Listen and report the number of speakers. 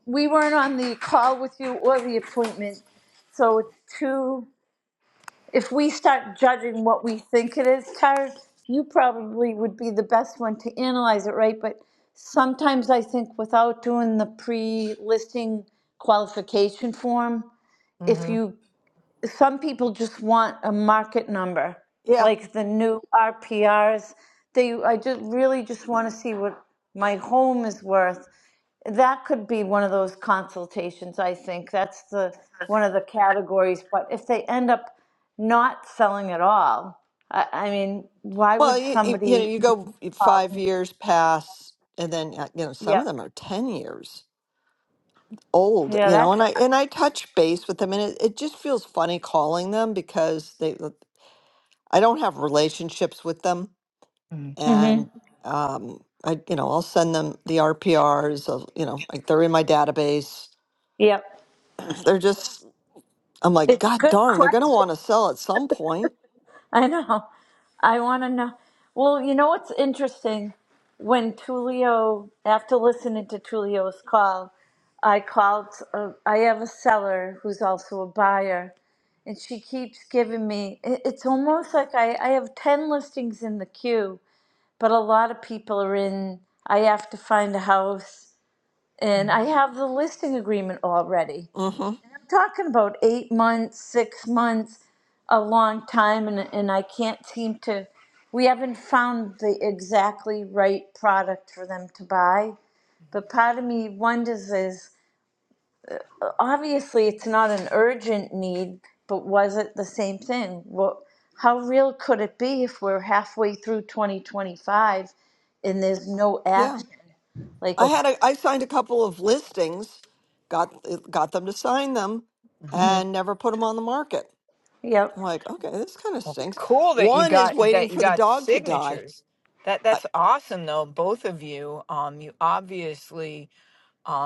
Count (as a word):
three